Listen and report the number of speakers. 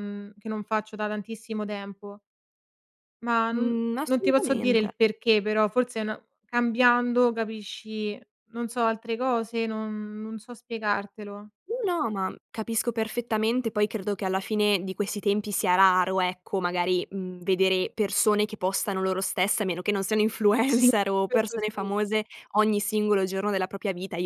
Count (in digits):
2